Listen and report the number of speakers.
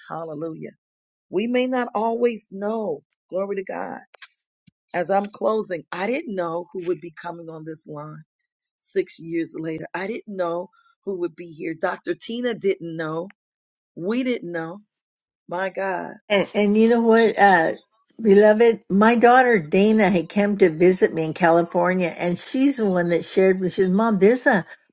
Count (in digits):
2